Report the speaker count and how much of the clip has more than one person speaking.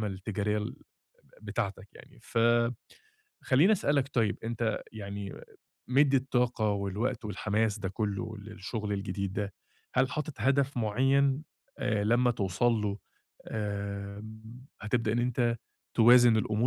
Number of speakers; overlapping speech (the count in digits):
1, no overlap